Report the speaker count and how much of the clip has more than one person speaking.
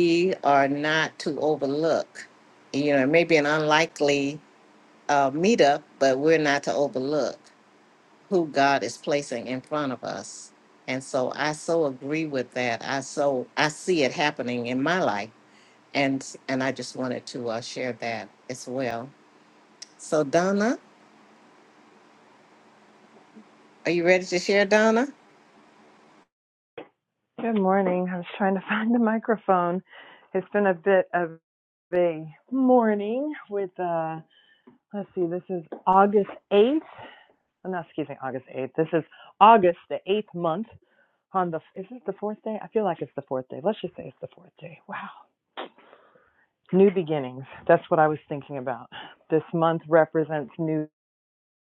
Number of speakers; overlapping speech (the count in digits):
2, no overlap